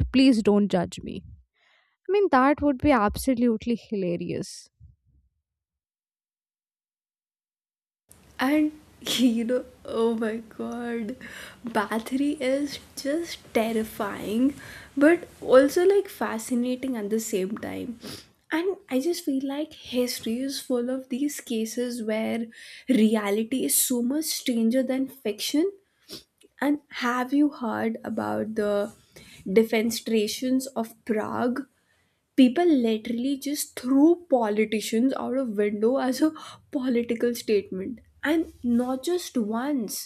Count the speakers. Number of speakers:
two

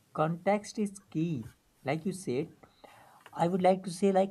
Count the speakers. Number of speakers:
one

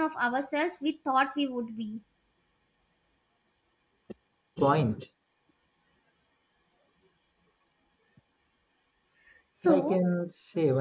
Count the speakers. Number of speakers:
two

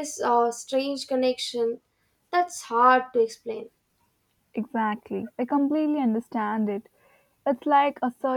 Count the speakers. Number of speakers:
two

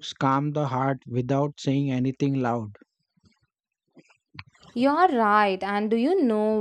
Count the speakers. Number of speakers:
two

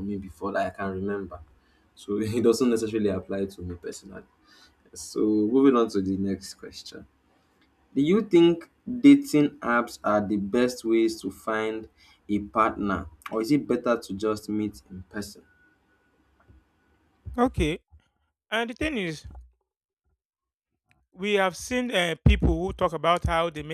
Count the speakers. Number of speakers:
two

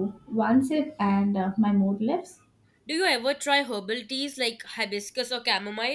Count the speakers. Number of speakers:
two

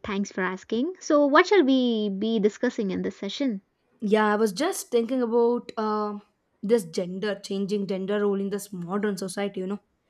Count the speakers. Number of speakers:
two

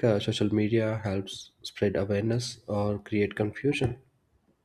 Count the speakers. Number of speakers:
one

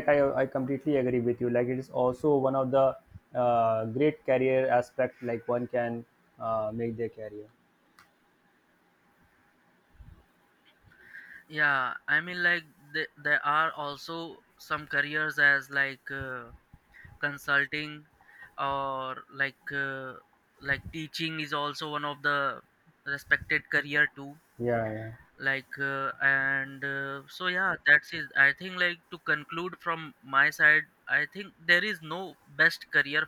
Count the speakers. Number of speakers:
two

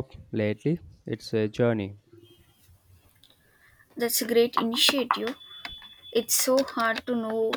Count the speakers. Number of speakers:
two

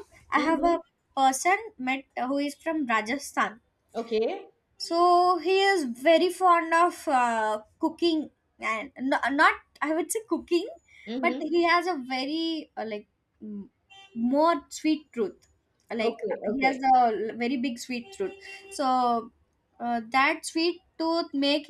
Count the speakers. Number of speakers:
two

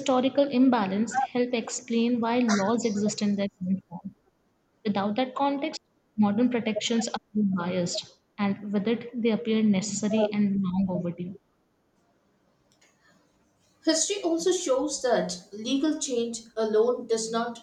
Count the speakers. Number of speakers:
two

